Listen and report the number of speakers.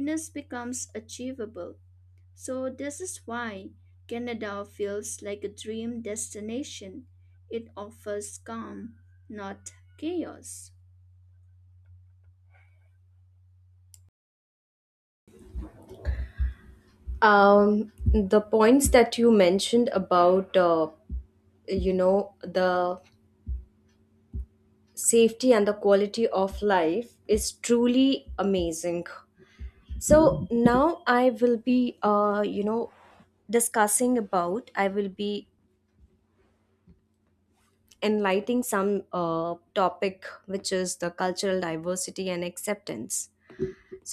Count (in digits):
2